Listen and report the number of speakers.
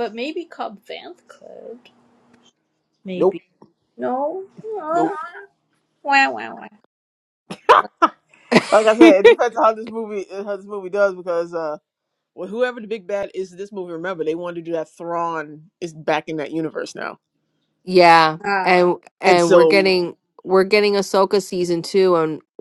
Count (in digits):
3